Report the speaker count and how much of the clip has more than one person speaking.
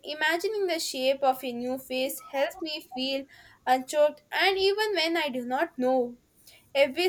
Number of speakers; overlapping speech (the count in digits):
1, no overlap